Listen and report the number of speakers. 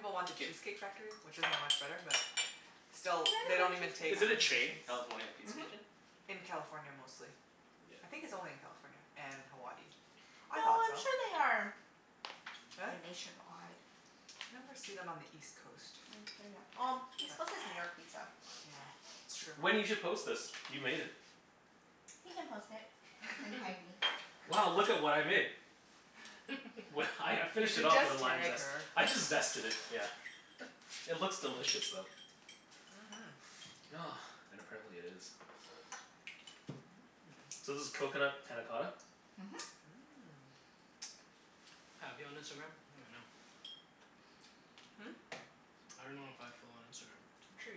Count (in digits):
4